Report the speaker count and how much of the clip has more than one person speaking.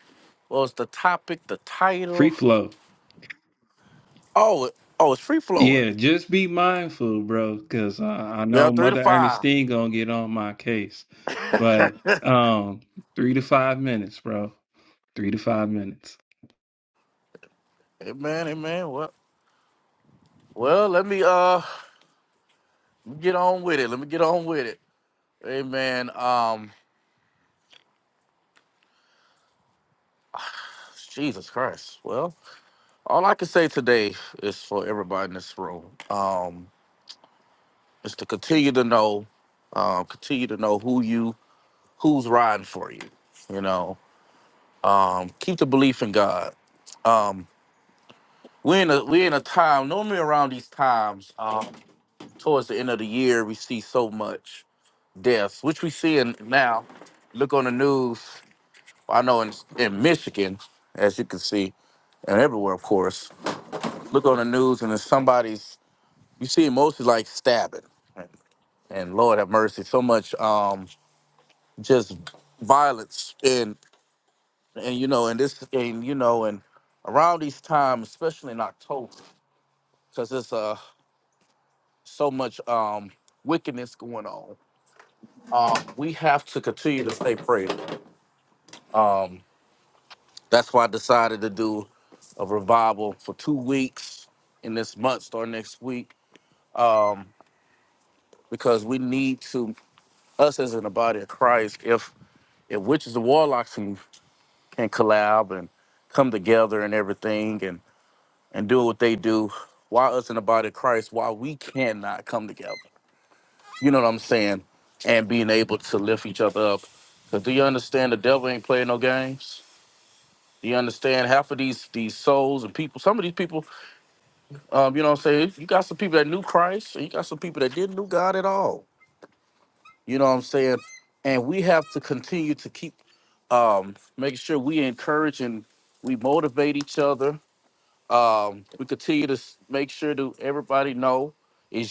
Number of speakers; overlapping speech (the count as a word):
two, about 1%